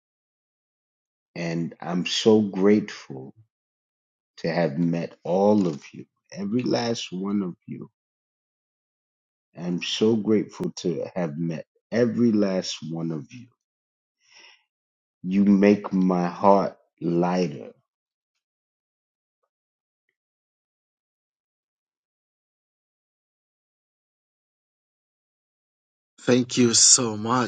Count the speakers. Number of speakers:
2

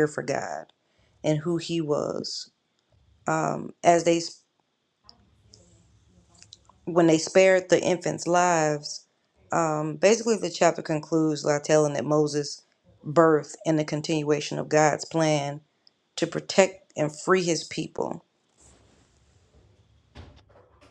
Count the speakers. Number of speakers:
1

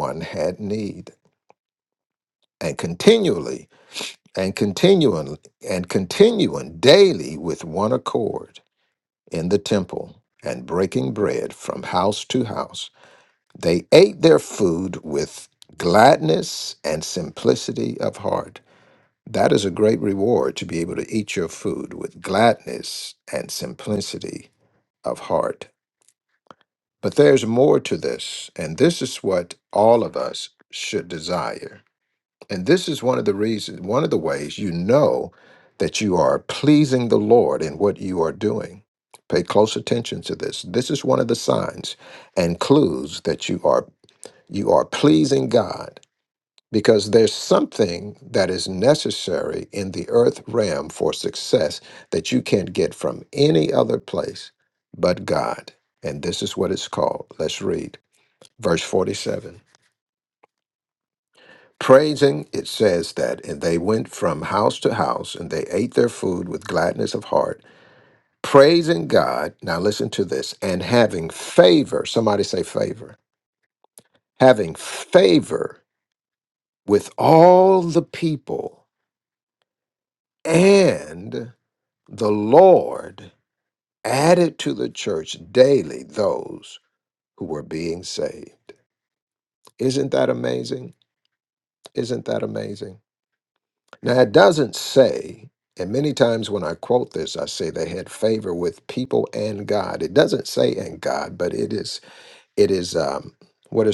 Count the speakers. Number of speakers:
1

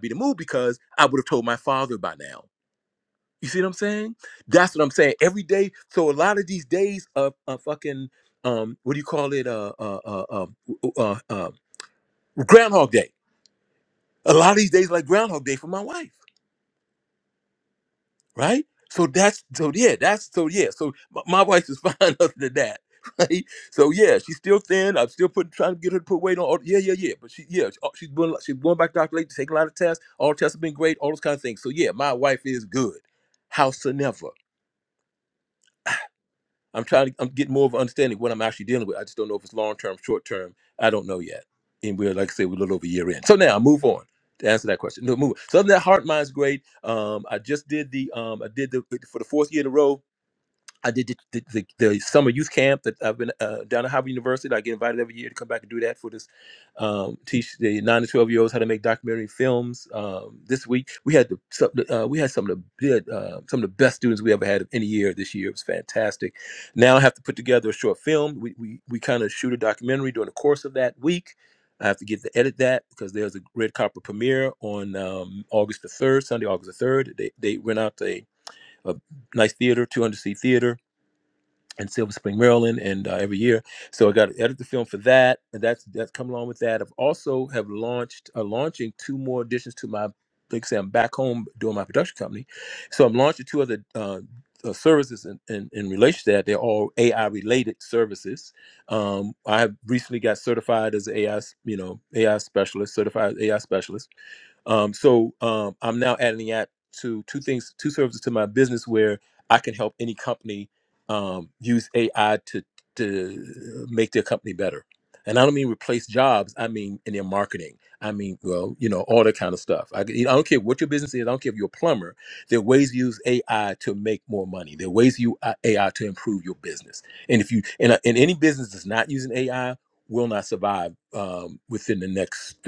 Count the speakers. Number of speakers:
1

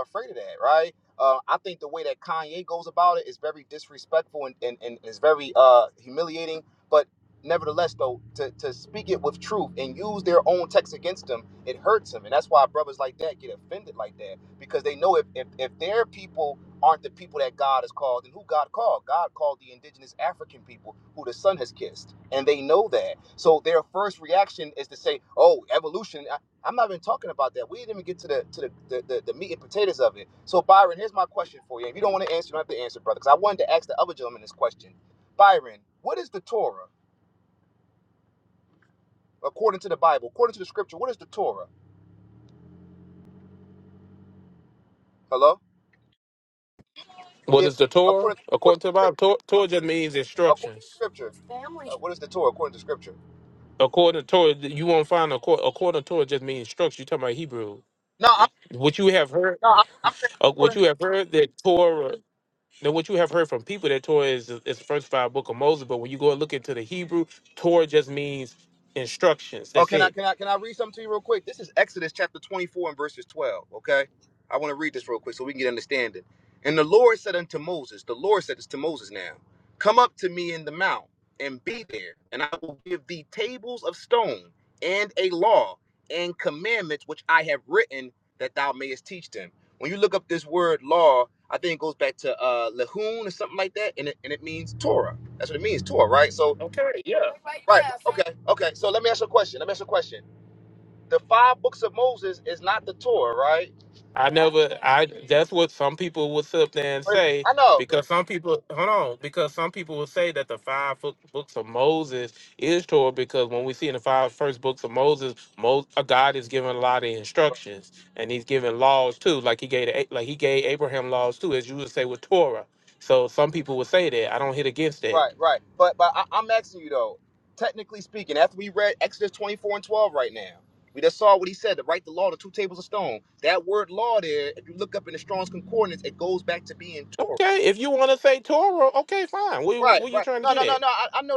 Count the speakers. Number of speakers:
2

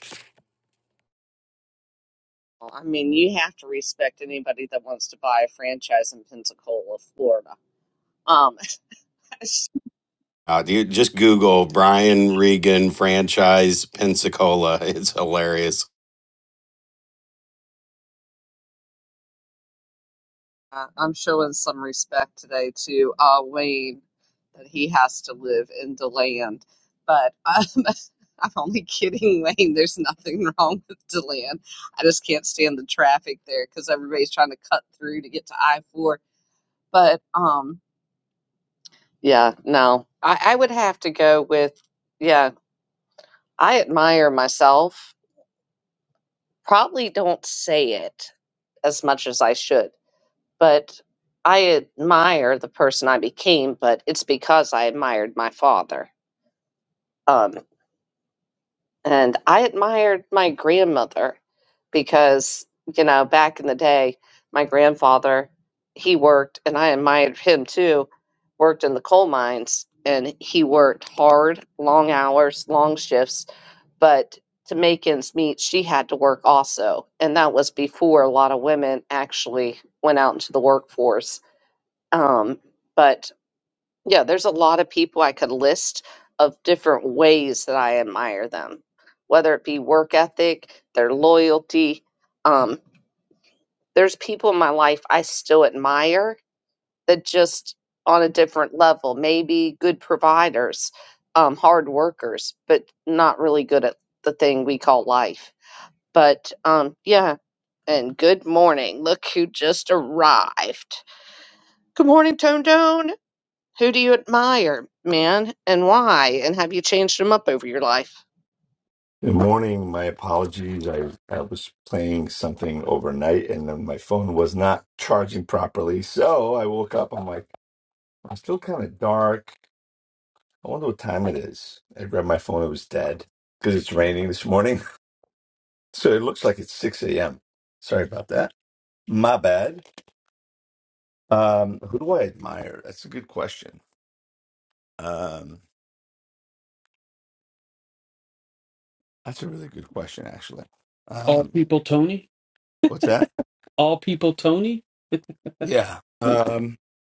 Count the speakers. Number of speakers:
4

